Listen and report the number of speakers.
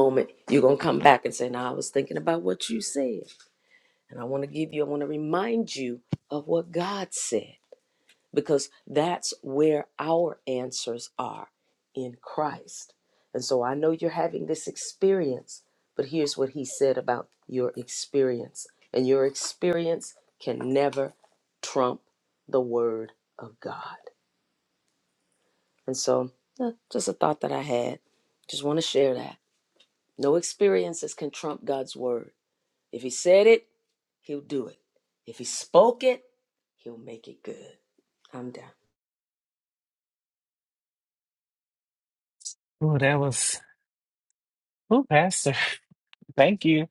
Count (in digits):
2